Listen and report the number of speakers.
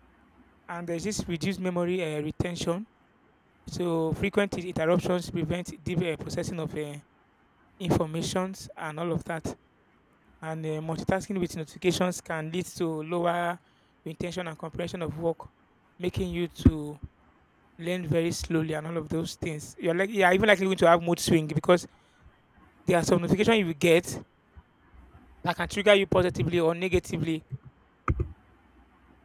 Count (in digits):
1